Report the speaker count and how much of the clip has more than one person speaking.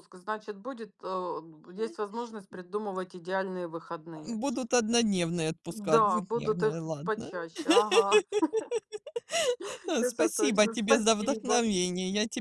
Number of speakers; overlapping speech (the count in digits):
2, about 29%